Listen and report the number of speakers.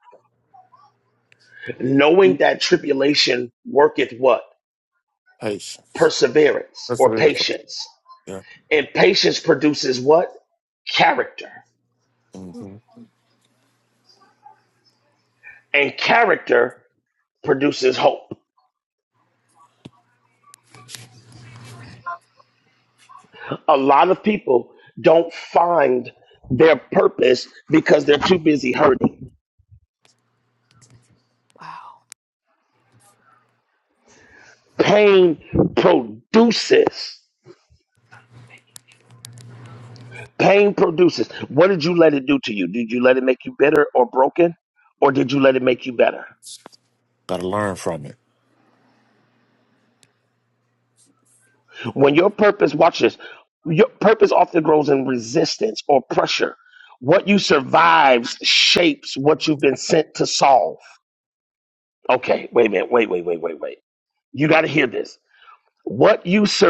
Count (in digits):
2